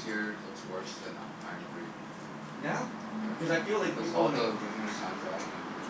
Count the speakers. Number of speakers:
two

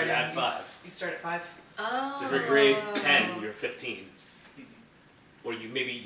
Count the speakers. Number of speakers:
three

